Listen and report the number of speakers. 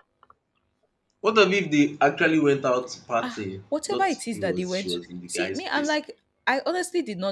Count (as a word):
two